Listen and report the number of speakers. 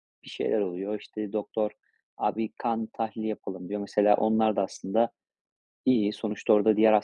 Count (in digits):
1